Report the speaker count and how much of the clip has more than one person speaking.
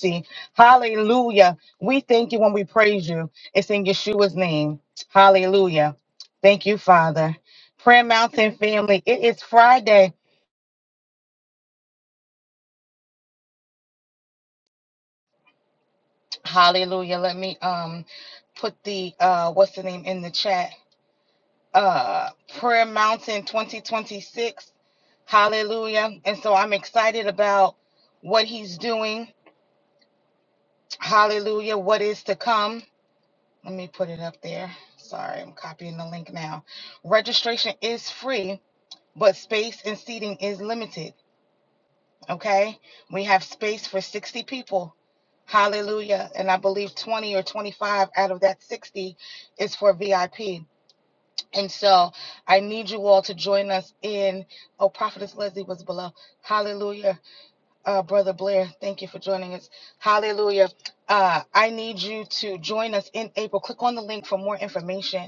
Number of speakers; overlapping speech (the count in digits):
1, no overlap